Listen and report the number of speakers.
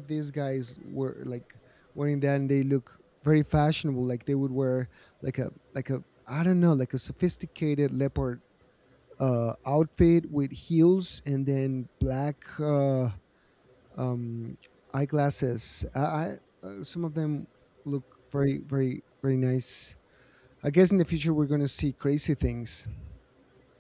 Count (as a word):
one